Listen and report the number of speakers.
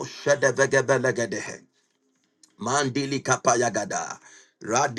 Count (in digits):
1